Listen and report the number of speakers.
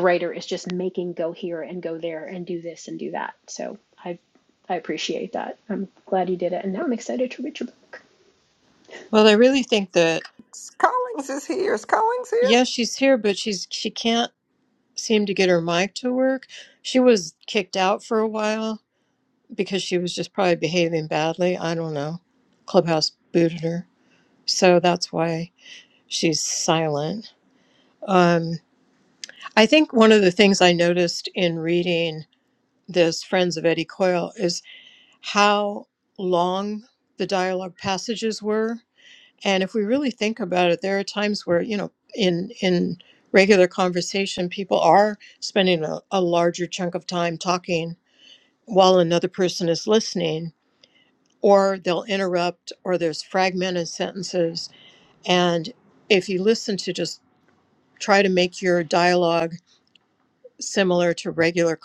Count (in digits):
3